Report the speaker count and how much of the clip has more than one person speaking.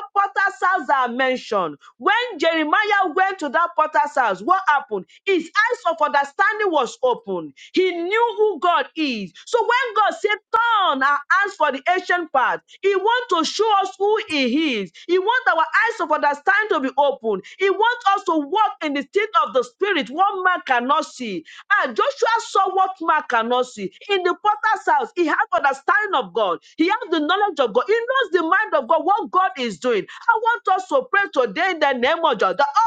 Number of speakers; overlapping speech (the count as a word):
one, no overlap